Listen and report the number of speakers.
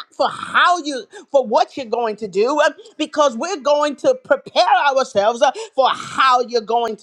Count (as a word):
one